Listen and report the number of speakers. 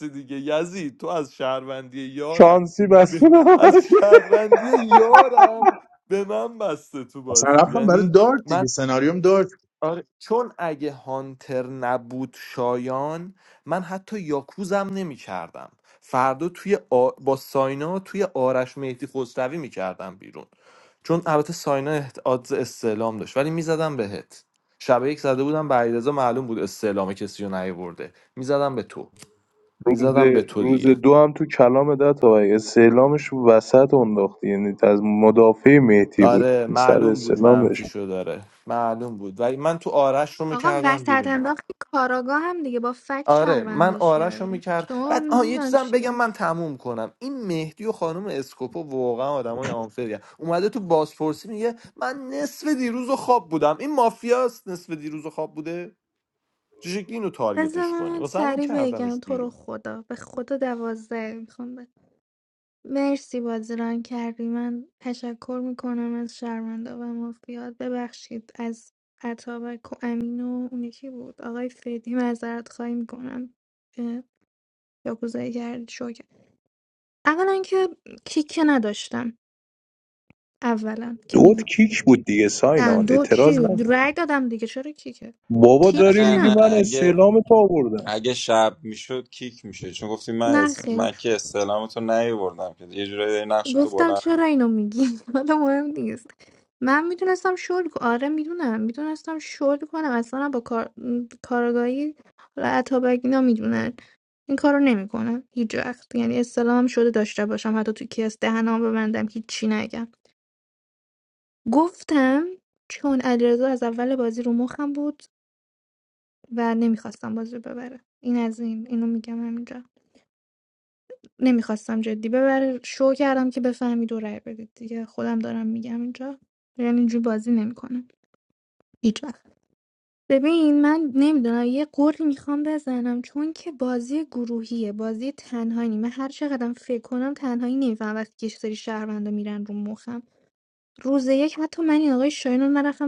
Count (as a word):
five